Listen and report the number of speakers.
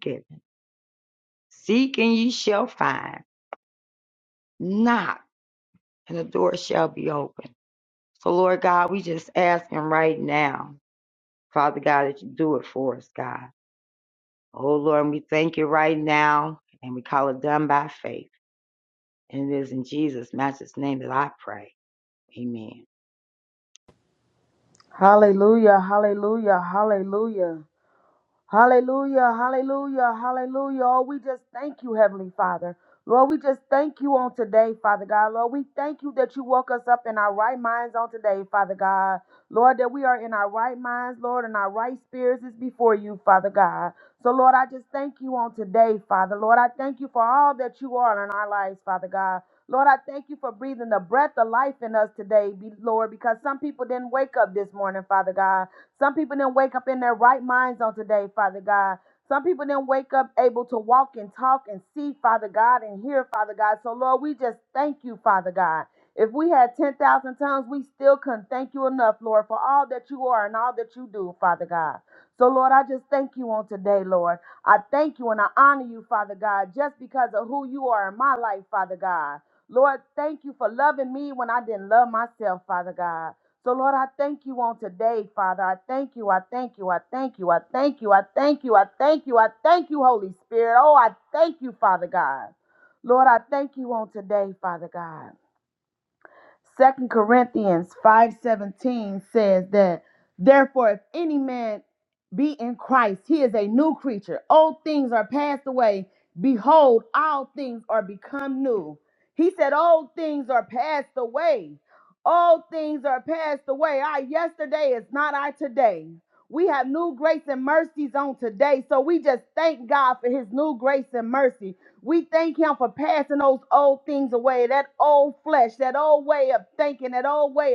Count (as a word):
two